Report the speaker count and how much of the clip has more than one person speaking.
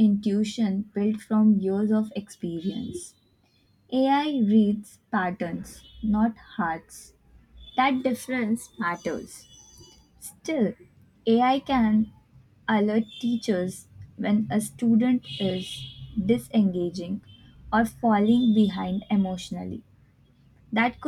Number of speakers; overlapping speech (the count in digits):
1, no overlap